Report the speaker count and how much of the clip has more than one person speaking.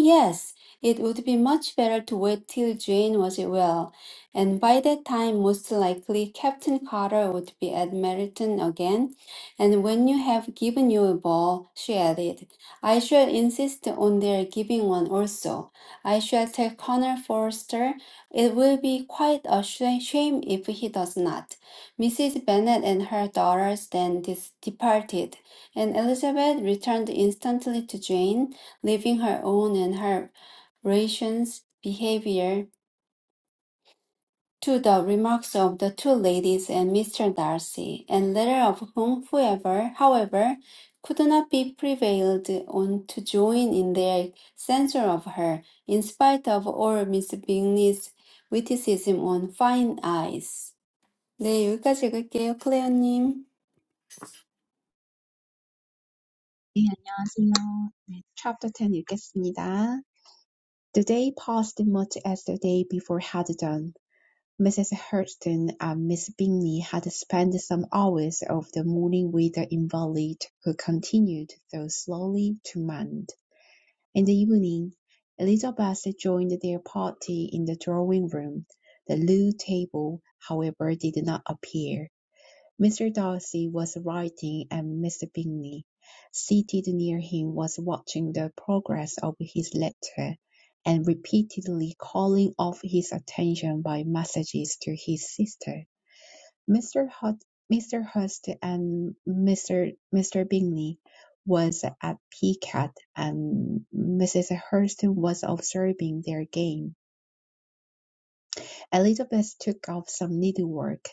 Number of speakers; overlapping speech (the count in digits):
2, no overlap